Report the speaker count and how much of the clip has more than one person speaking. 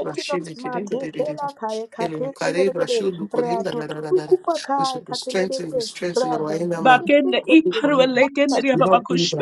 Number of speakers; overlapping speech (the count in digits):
3, about 74%